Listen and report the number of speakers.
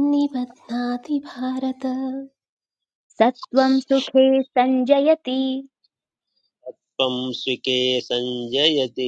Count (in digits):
3